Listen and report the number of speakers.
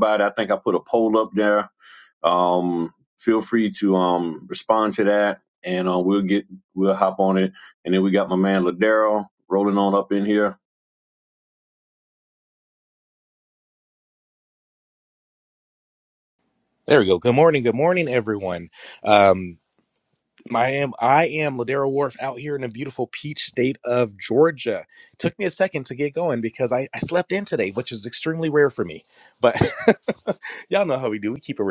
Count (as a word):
two